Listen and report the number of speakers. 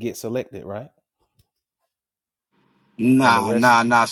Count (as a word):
two